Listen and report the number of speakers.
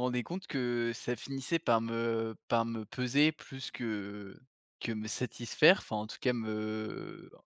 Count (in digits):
1